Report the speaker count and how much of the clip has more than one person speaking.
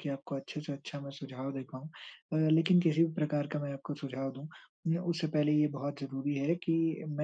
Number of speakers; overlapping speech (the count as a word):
one, no overlap